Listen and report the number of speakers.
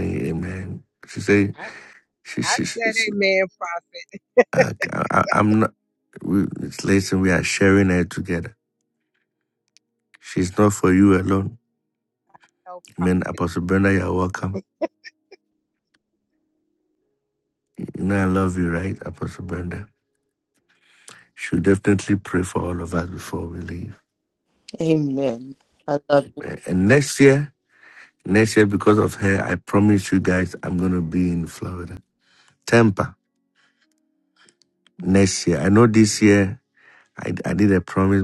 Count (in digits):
3